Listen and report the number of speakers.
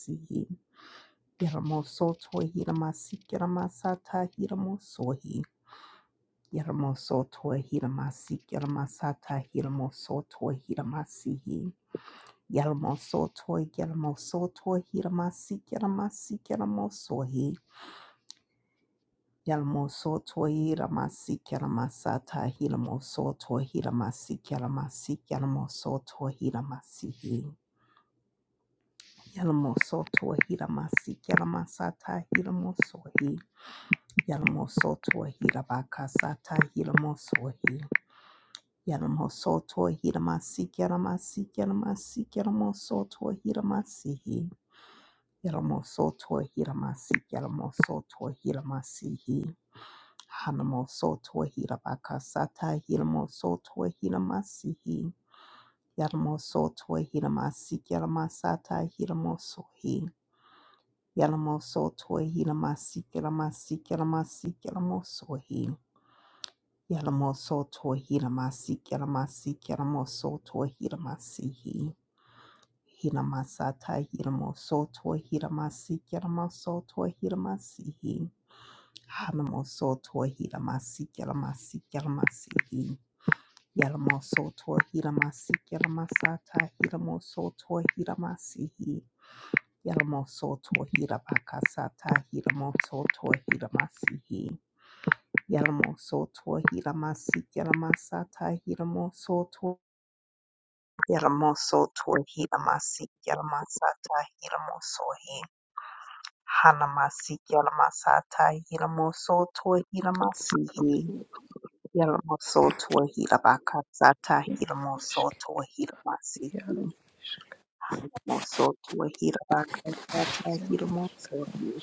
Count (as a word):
two